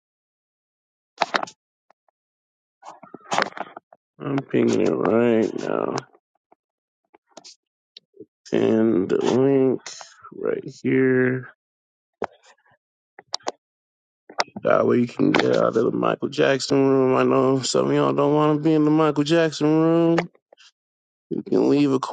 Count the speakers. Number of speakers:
one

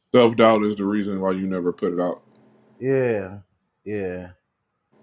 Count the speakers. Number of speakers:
two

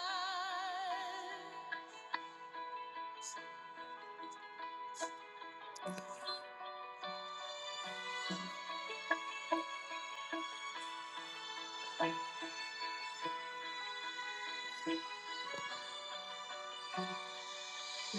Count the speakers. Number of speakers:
zero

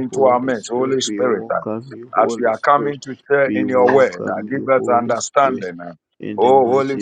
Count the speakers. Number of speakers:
two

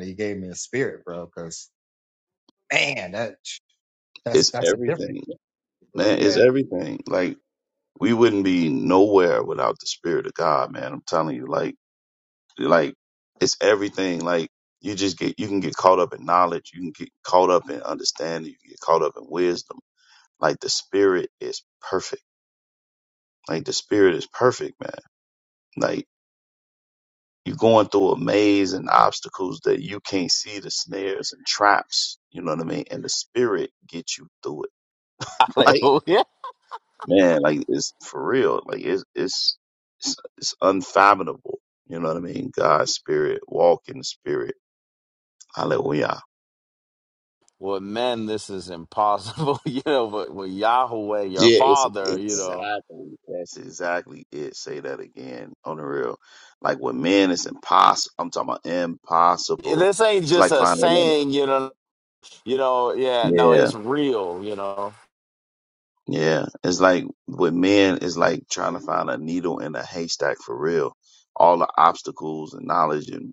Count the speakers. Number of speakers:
three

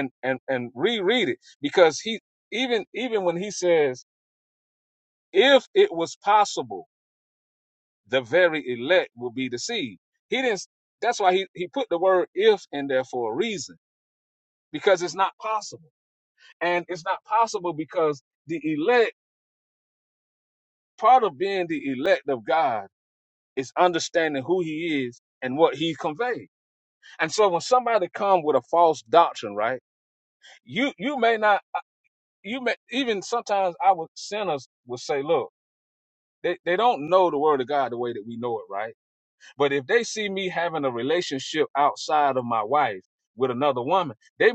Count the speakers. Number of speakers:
one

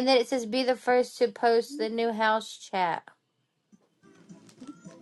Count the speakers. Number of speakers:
one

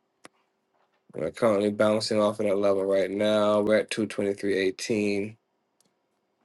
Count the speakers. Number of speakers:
one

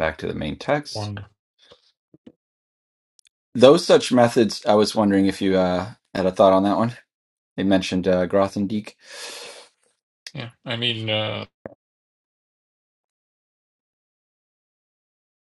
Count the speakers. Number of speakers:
two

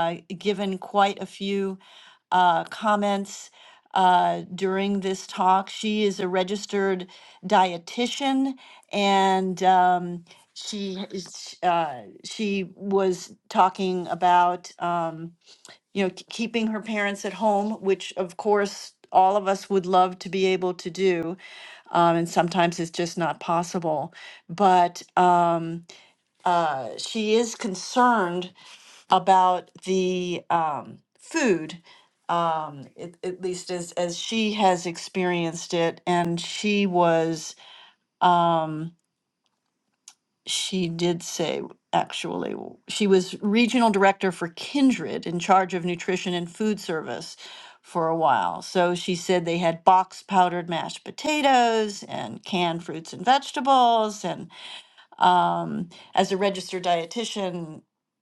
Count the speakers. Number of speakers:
one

